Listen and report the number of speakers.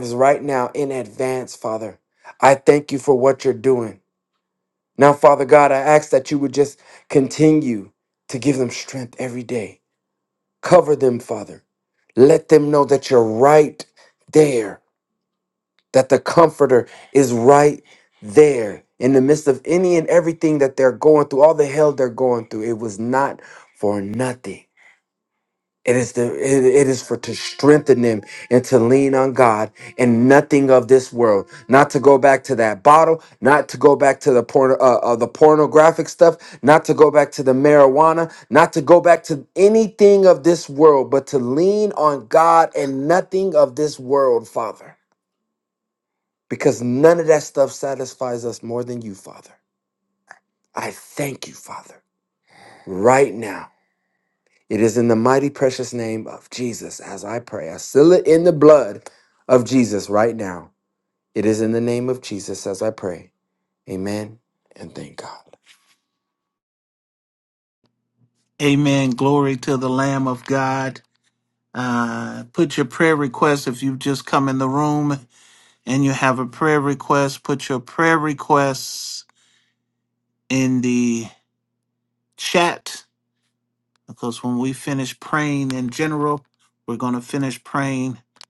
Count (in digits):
2